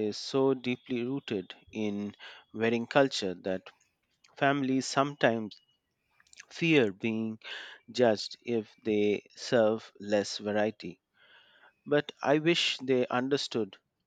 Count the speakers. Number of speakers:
1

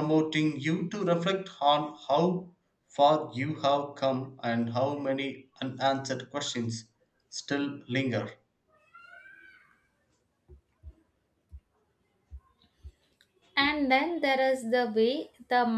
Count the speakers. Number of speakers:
2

